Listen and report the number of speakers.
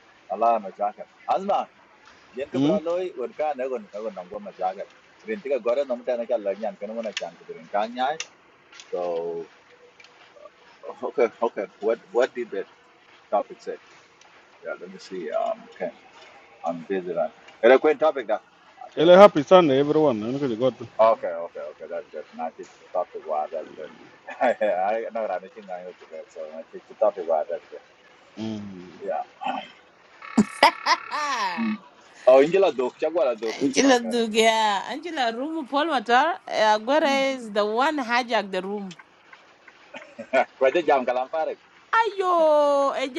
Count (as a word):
three